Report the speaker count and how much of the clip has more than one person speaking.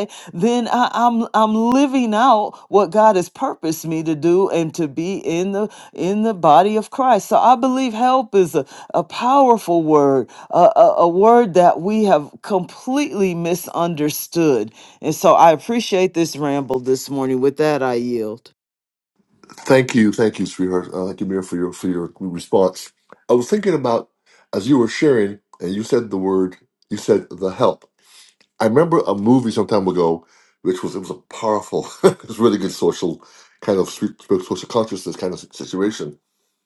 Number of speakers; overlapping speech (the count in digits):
2, no overlap